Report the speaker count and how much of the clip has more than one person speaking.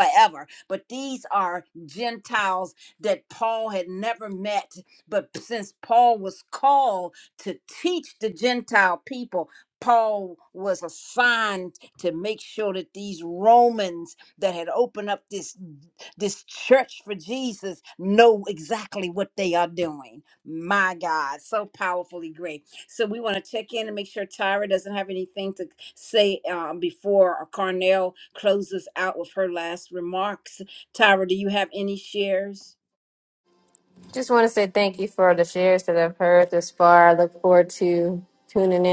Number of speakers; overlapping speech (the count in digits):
2, no overlap